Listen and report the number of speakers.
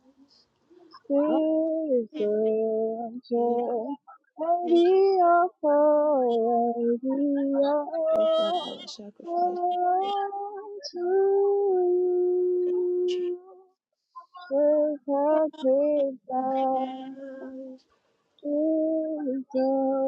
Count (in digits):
2